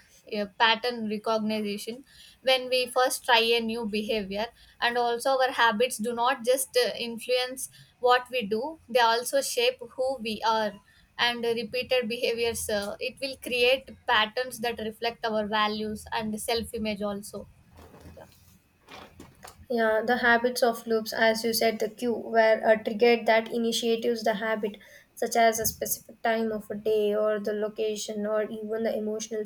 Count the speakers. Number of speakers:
two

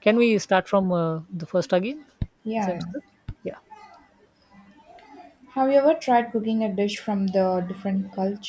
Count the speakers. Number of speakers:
two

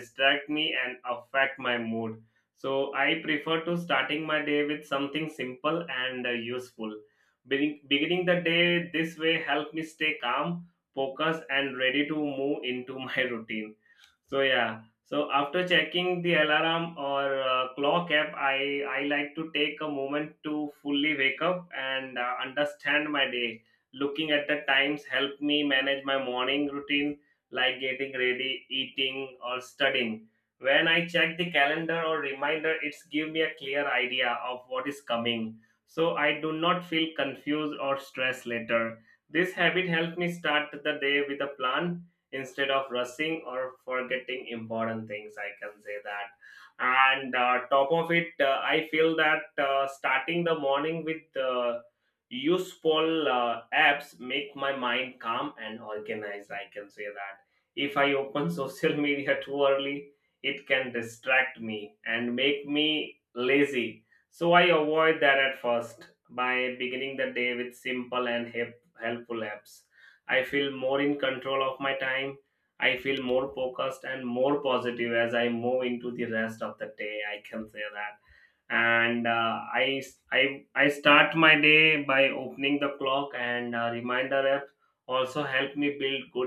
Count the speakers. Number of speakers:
one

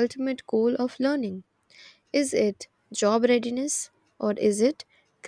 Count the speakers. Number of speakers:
one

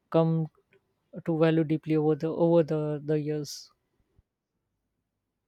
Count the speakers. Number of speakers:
one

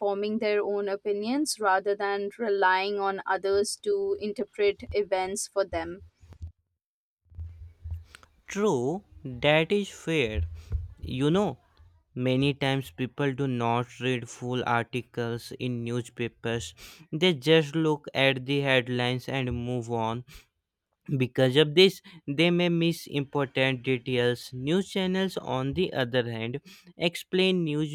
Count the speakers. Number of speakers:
two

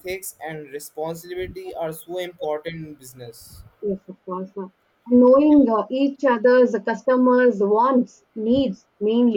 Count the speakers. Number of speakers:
two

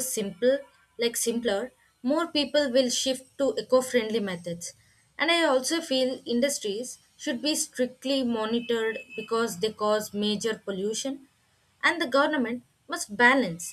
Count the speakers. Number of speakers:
one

